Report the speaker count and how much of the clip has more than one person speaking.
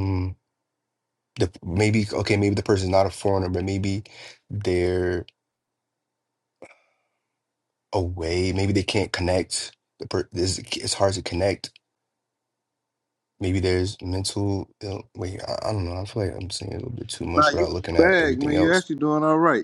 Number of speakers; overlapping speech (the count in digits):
2, about 7%